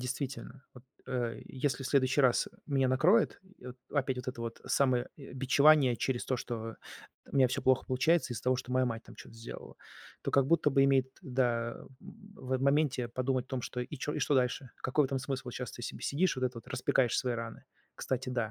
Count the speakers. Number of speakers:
one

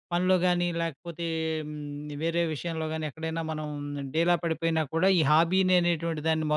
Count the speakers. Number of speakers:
one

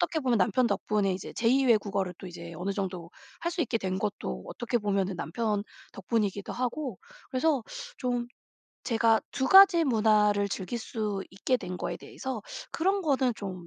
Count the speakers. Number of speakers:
one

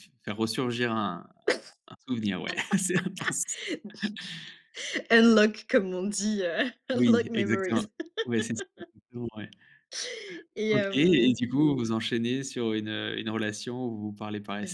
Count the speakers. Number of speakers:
two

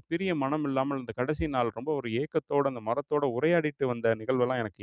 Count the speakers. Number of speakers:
one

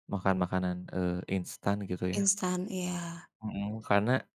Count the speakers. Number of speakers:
two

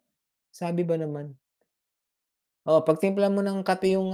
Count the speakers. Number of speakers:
one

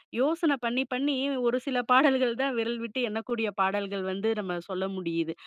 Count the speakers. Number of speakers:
one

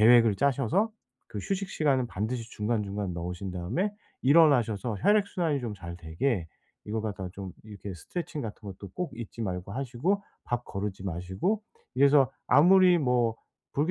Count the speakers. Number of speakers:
one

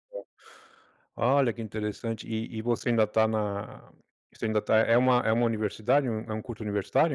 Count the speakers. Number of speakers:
one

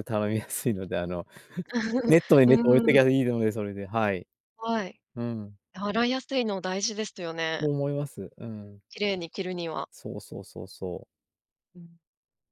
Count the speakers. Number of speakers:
two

